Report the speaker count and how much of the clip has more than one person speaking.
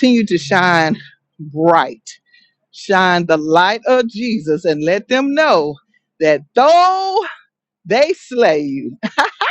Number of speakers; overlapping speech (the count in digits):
1, no overlap